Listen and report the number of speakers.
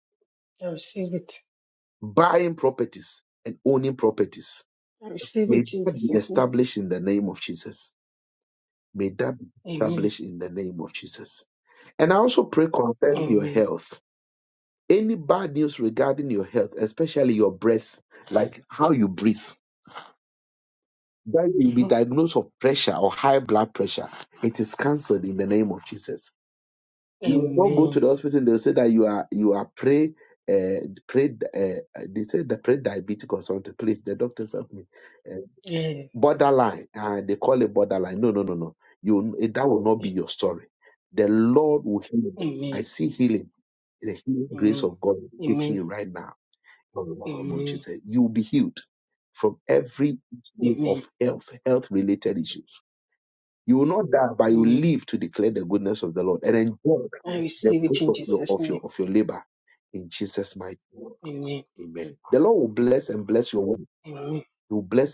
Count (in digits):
2